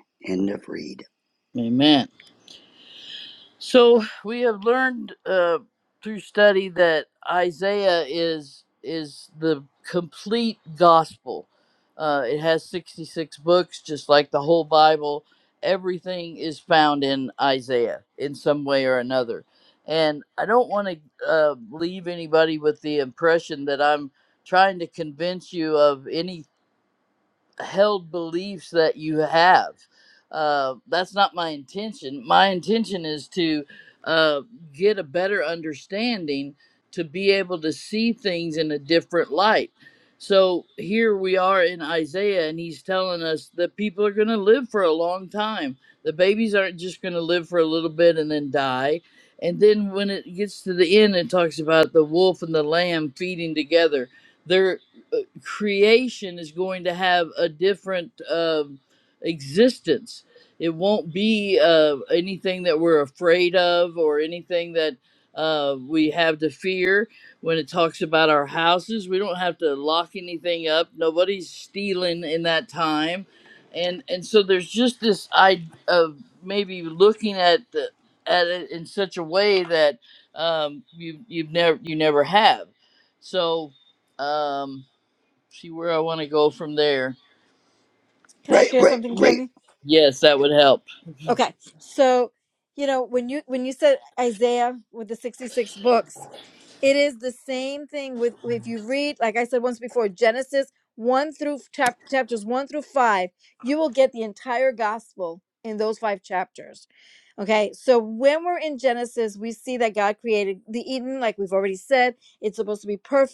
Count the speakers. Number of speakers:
three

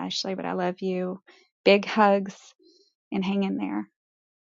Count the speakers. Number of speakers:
one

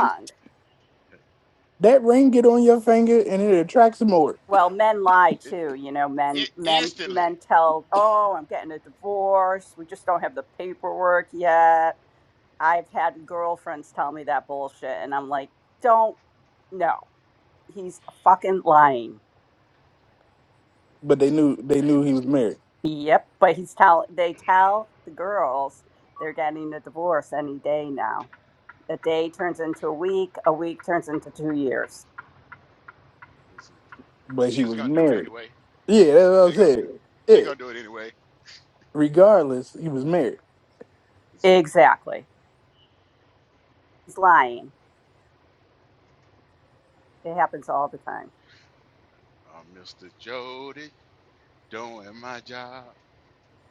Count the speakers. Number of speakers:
three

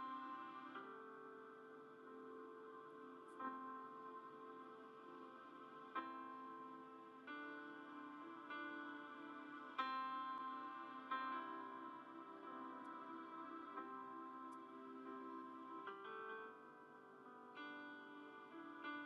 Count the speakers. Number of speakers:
zero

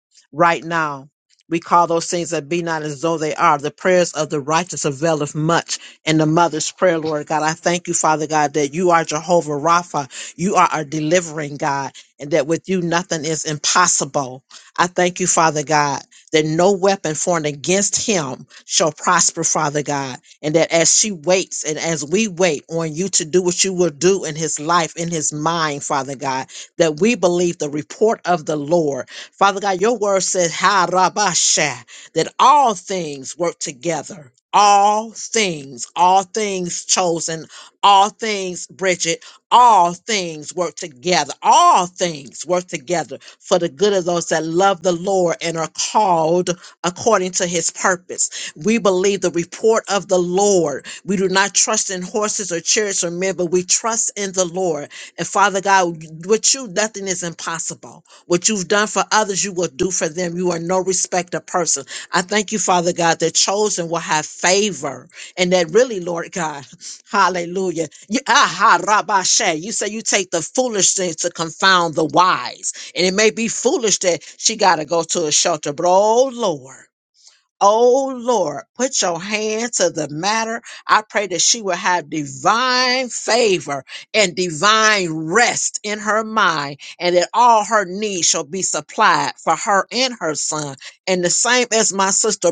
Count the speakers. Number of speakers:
one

